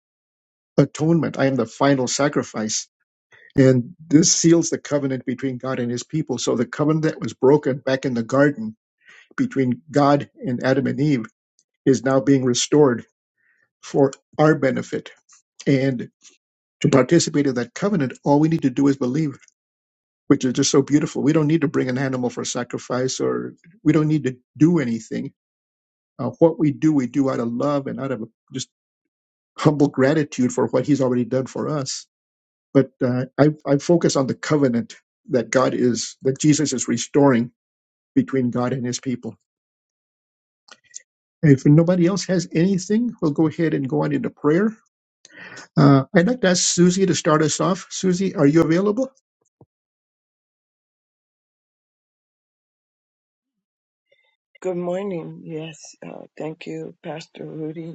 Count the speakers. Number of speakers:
two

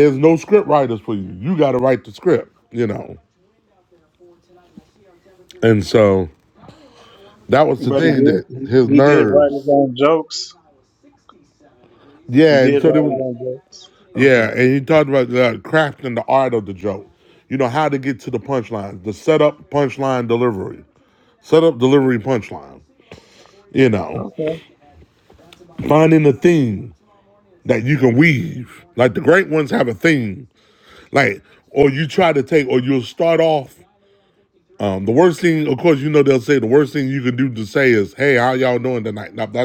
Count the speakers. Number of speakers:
two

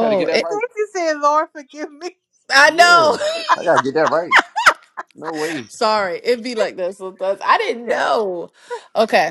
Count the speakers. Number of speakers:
three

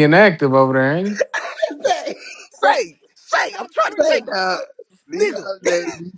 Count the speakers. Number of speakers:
three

